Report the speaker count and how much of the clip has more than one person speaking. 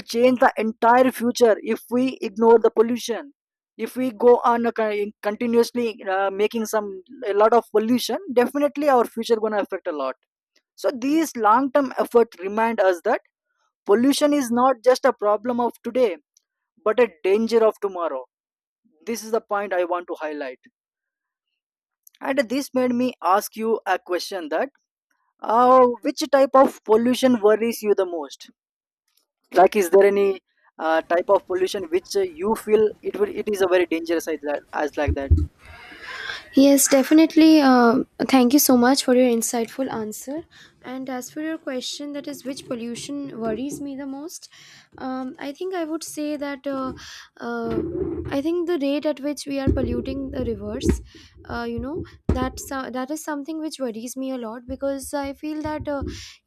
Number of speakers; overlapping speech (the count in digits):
2, no overlap